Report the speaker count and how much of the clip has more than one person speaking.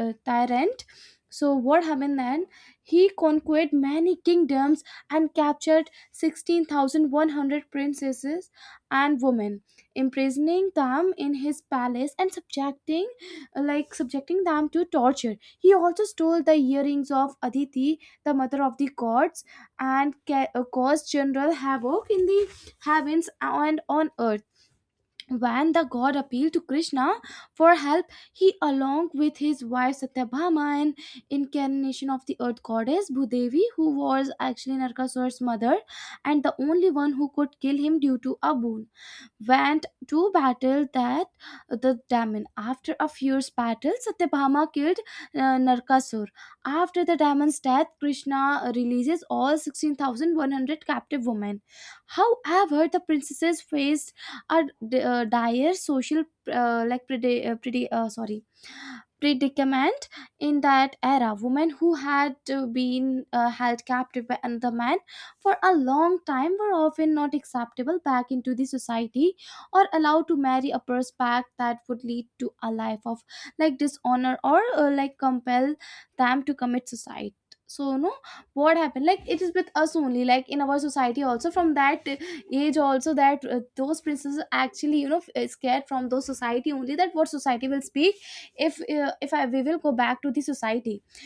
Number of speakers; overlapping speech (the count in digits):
1, no overlap